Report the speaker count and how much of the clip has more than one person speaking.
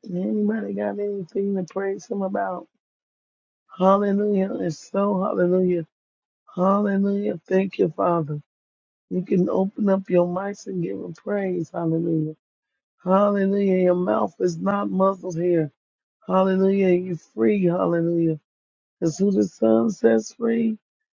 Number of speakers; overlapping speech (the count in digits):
1, no overlap